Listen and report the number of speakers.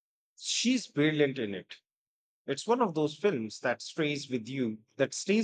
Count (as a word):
one